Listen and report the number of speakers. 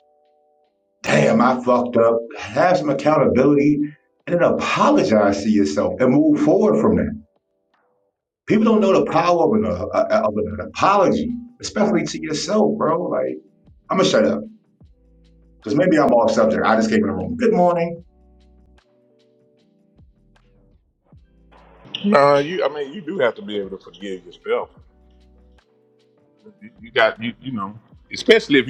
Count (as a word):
two